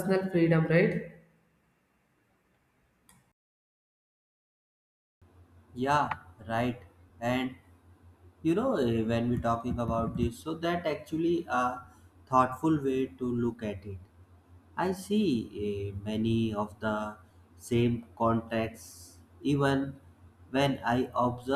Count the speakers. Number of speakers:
2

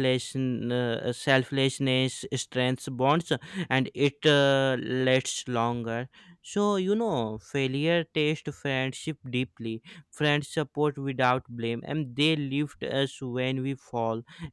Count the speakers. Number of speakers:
1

